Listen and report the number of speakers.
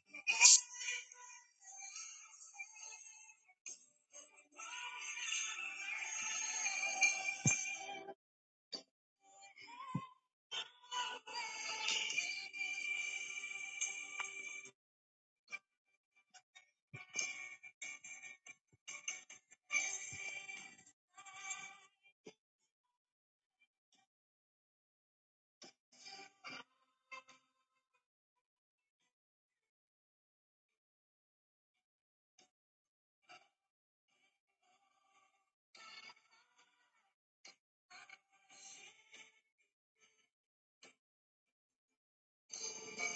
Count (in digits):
0